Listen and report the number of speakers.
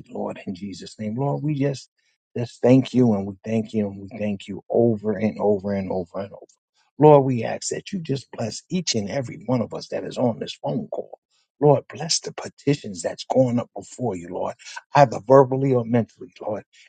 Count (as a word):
one